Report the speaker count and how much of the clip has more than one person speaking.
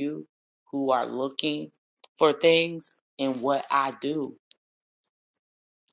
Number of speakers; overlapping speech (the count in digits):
1, no overlap